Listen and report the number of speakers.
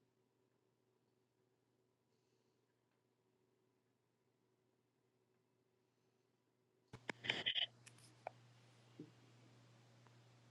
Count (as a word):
zero